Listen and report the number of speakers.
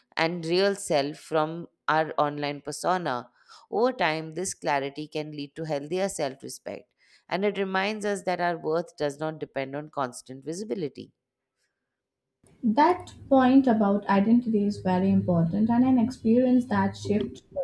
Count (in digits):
2